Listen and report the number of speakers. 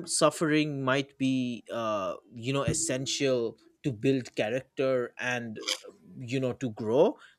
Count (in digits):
1